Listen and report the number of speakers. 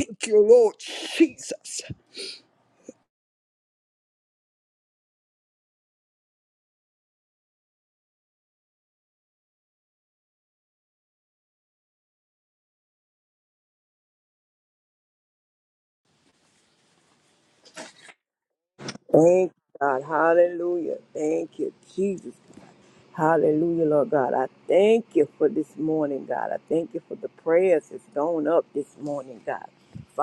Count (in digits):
2